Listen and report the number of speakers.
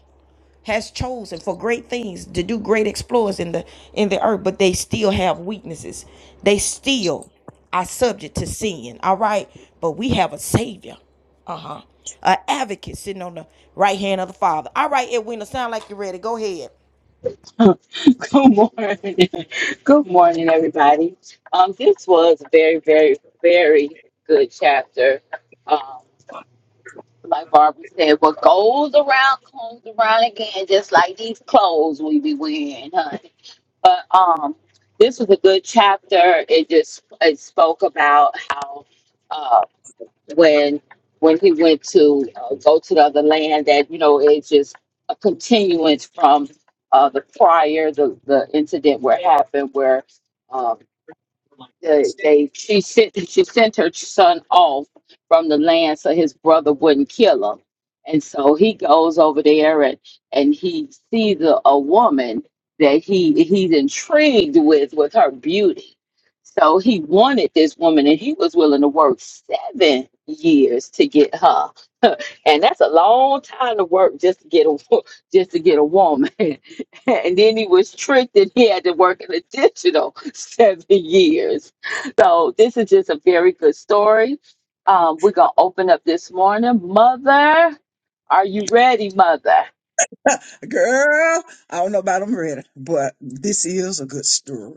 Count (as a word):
three